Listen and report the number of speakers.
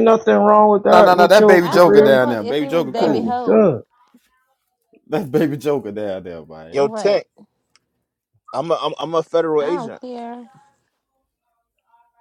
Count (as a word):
four